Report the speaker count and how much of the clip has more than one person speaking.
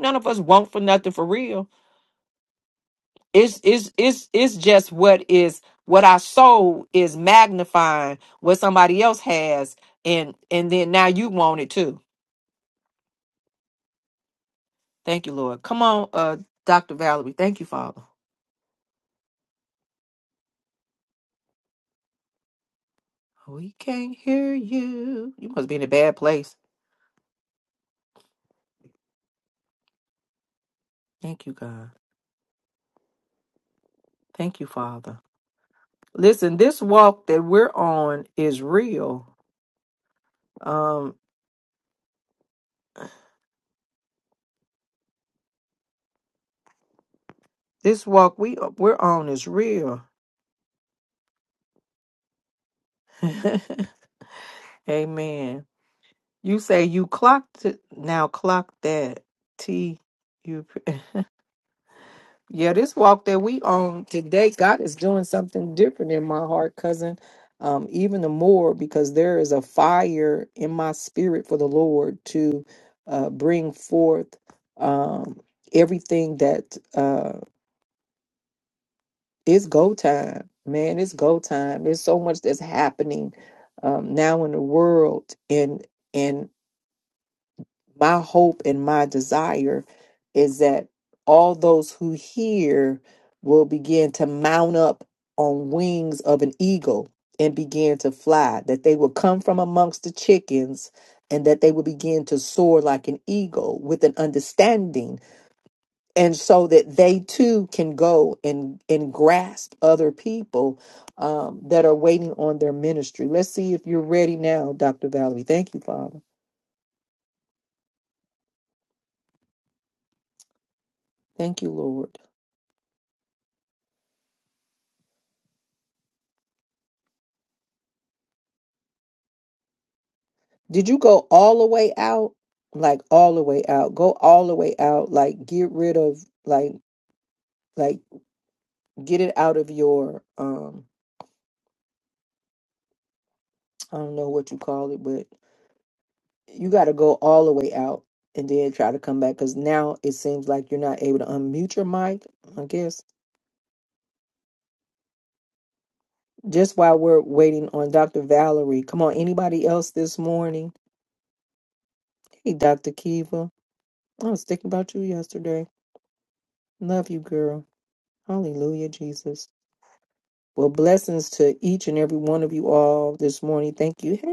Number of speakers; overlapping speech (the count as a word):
one, no overlap